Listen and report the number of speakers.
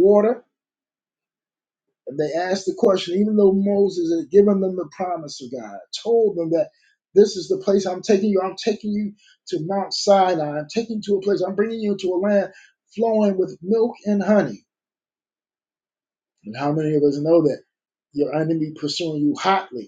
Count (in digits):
1